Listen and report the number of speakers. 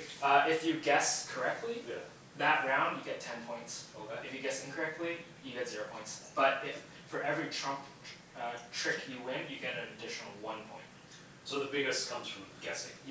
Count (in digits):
2